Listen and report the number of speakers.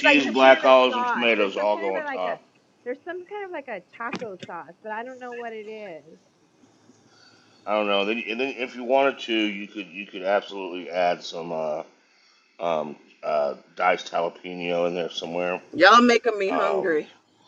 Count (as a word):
three